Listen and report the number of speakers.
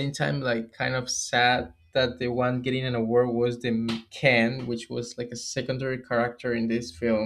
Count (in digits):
1